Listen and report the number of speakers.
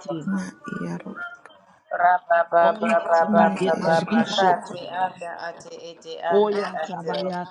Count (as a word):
three